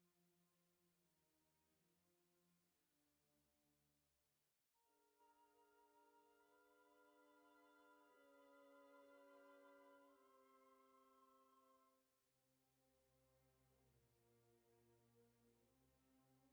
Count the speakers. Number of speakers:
0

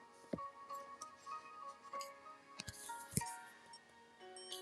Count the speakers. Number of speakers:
0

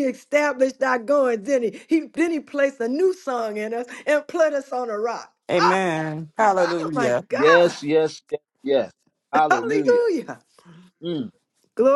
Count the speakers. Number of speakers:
3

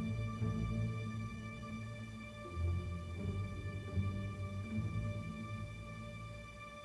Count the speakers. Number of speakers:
0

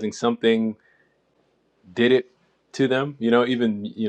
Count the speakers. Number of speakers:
1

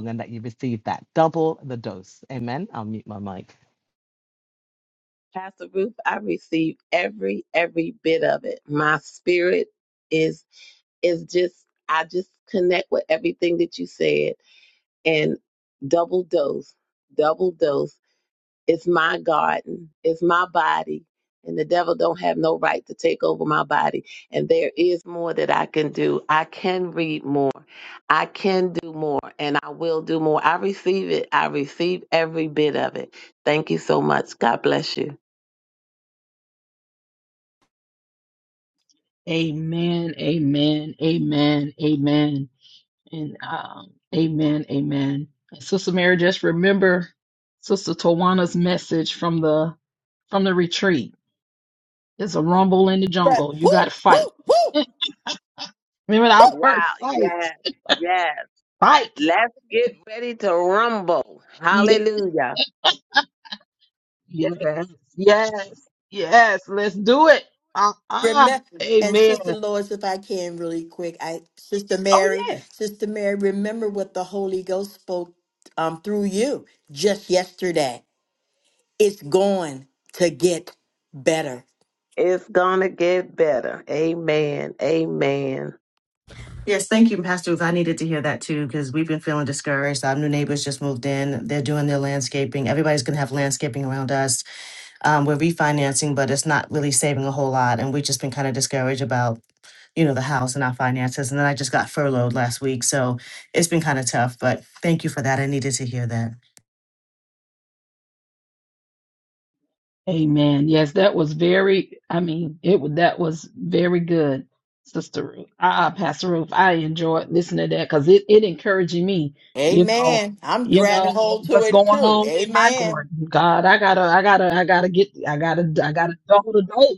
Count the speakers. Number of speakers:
5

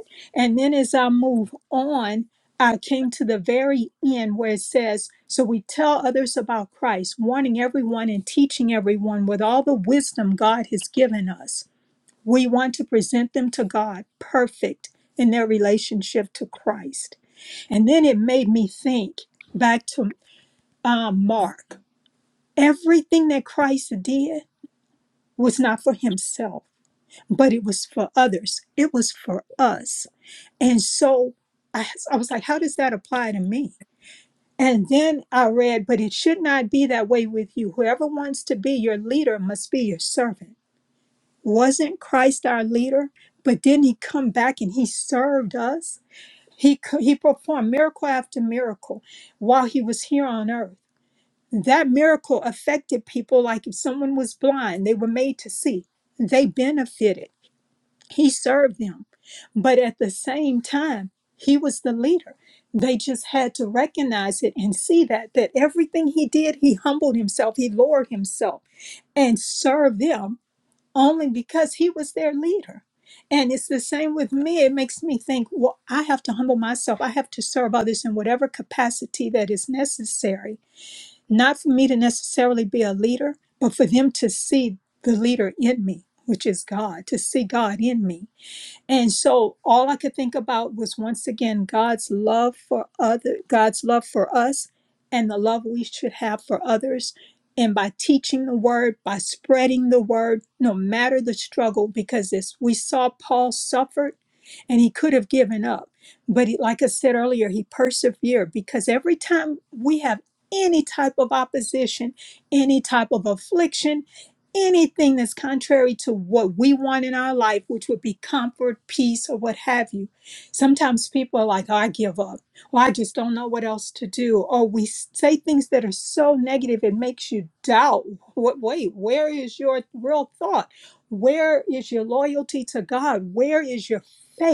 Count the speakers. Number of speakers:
1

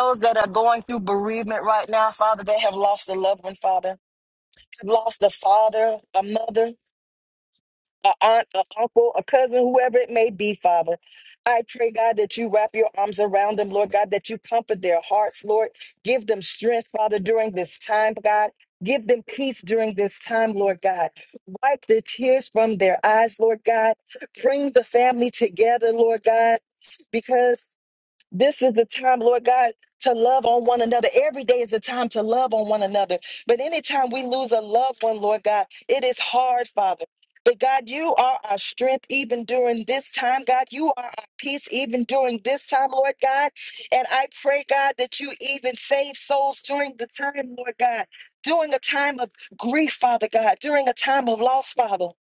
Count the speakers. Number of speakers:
1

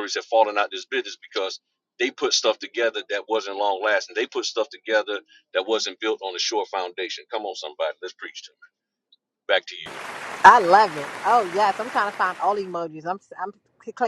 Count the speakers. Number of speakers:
2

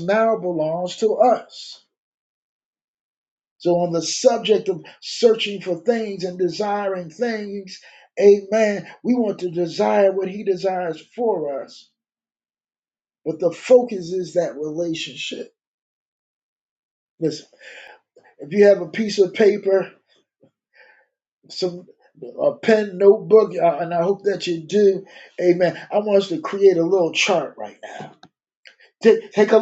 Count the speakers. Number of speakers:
1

